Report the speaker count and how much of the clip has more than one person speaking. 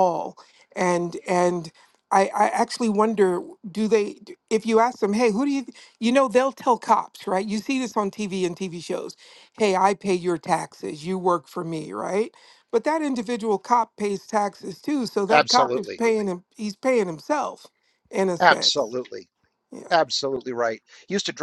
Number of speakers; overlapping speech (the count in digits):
2, about 5%